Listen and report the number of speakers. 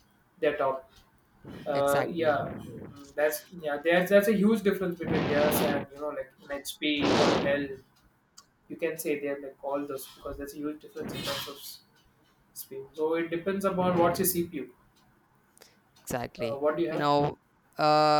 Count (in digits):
2